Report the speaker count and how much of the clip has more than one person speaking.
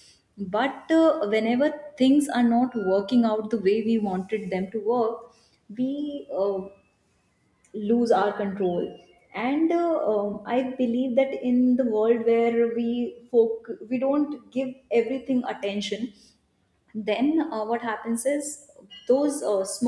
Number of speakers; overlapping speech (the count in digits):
1, no overlap